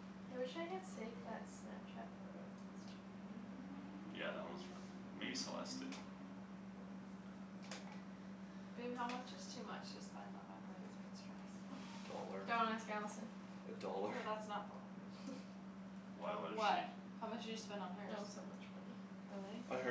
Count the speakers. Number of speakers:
four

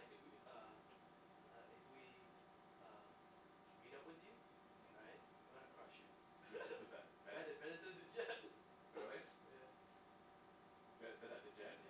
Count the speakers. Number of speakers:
two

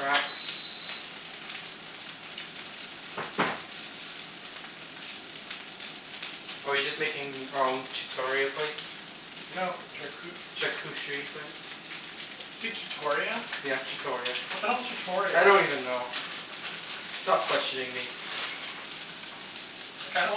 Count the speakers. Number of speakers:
two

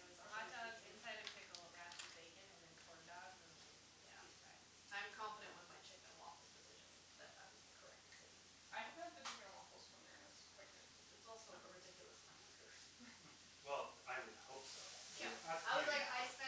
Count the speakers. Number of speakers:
four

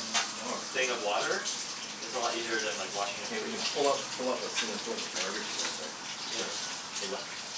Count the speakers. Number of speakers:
two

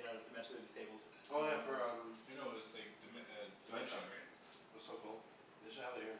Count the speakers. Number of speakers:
three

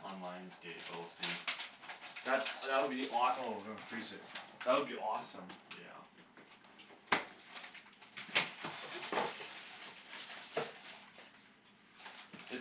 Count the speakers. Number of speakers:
two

